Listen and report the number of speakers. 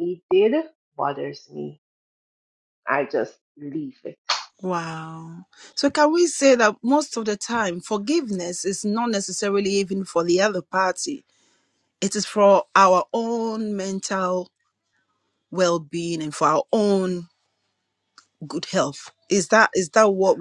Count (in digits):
2